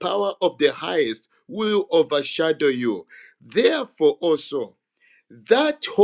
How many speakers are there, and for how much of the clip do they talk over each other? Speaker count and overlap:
1, no overlap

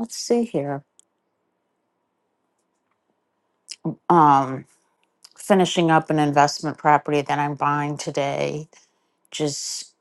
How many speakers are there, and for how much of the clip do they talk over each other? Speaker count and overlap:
1, no overlap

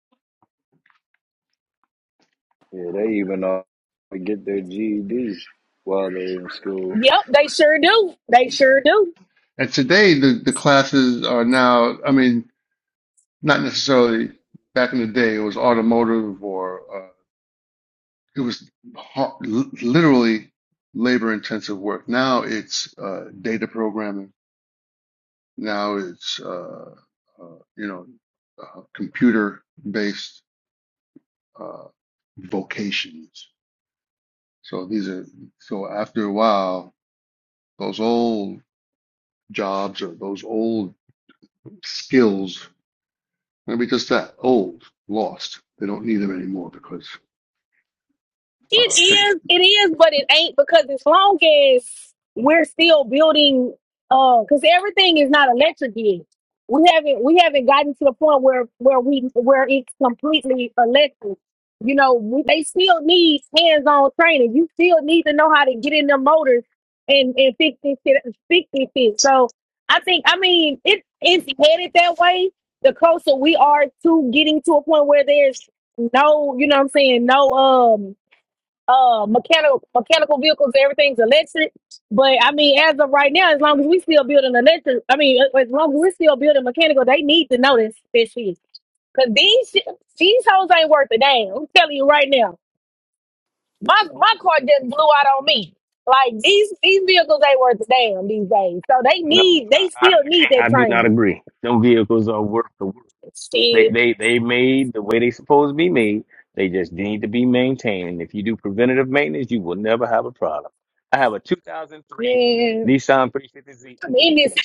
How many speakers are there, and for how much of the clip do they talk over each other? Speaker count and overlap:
4, about 2%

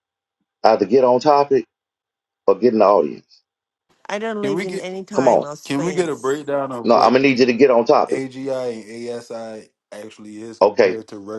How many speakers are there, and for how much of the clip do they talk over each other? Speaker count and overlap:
3, about 17%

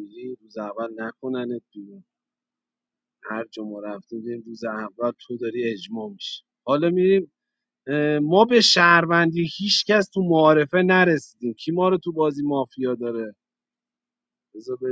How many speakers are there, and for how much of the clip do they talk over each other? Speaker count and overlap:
1, no overlap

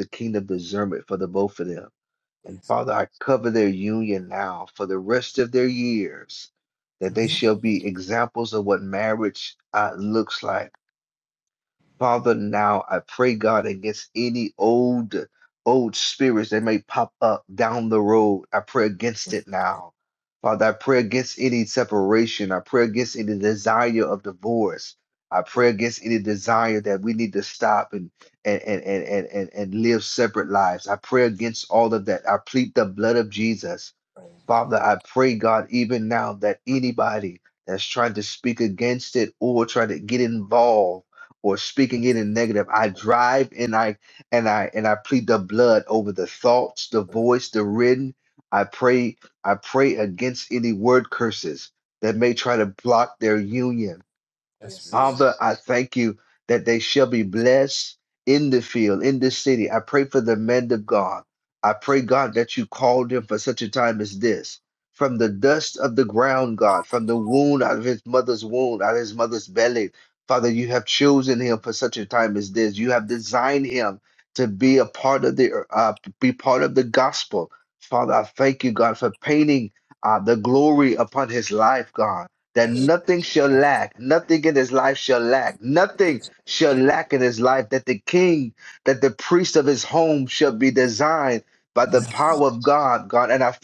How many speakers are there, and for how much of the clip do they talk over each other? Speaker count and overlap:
1, no overlap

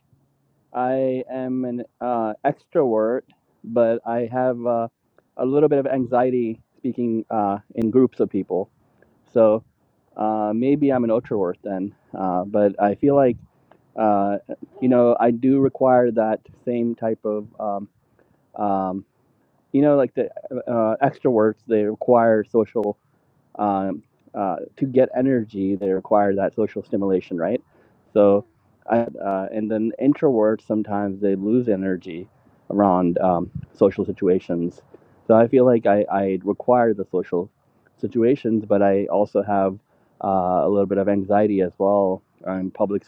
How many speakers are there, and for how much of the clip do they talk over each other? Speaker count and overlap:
1, no overlap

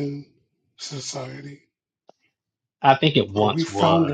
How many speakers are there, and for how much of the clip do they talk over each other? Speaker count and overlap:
2, about 19%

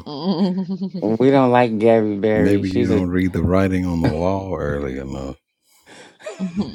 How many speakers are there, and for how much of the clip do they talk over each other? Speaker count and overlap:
3, about 12%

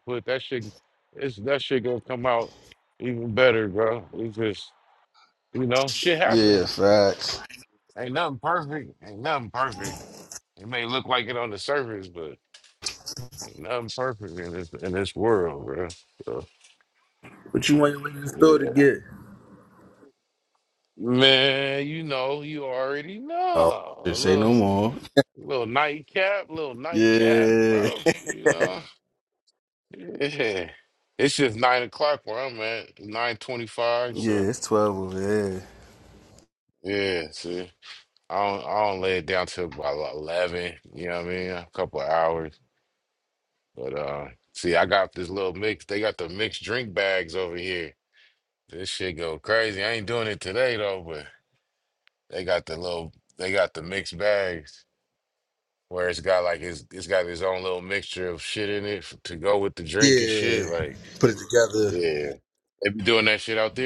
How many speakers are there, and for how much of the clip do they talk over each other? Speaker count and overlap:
2, about 6%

